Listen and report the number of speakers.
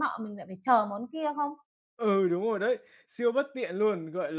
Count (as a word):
two